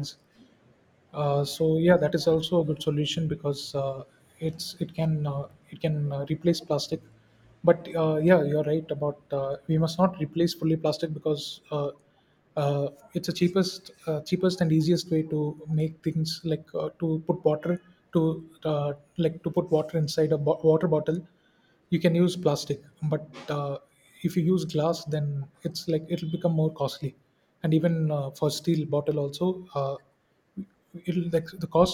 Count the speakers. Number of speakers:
one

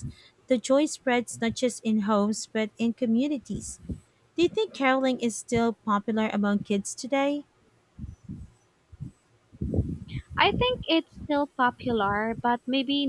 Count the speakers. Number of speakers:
two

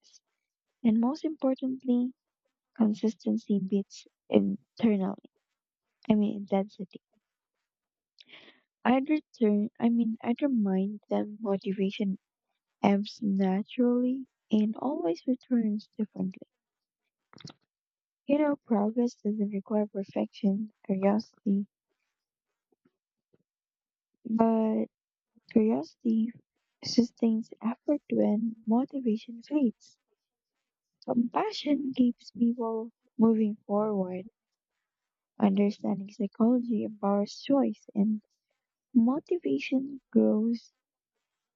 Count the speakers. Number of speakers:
one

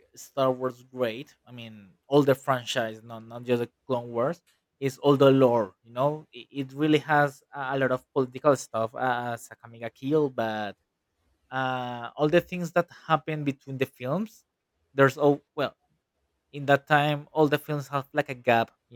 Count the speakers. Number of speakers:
one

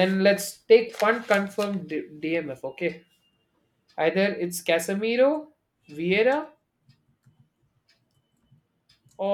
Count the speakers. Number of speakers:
one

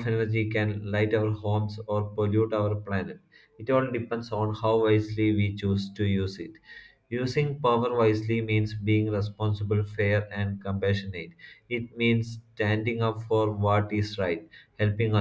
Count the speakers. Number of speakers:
one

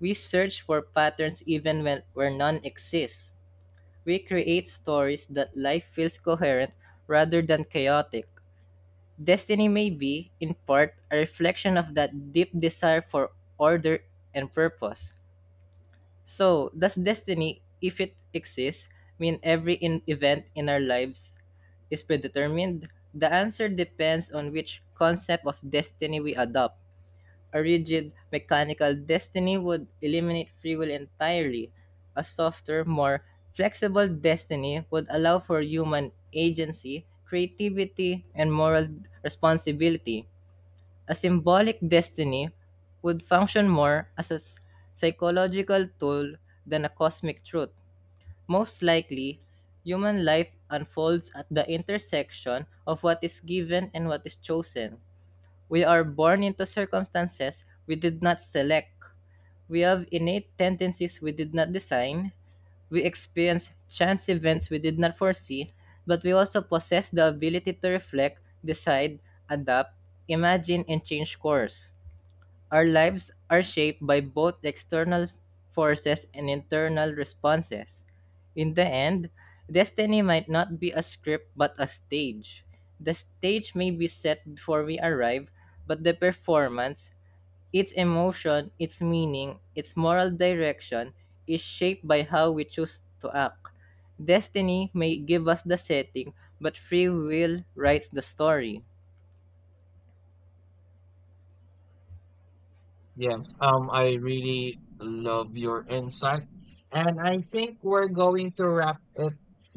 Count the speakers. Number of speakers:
two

